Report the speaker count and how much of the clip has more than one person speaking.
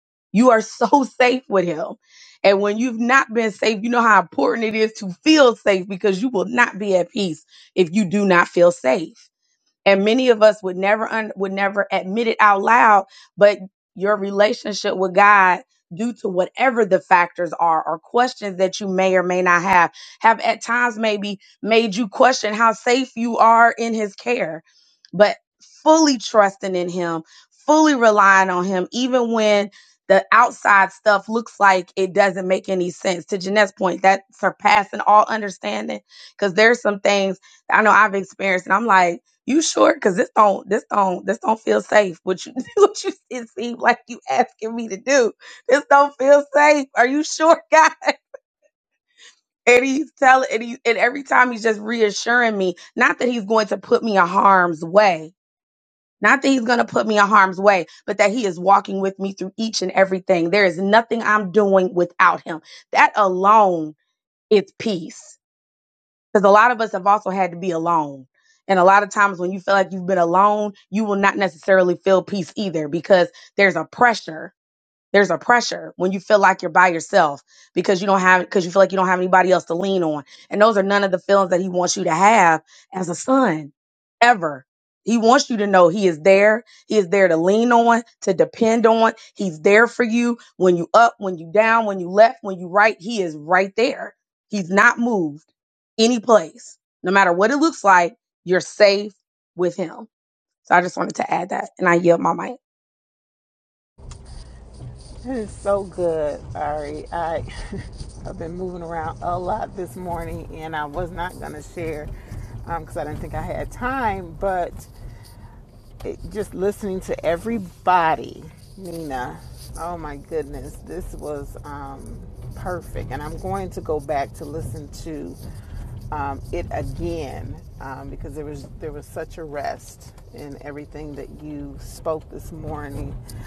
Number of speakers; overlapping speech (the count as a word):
two, no overlap